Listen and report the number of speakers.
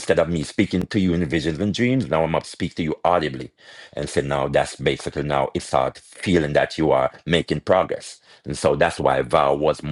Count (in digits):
1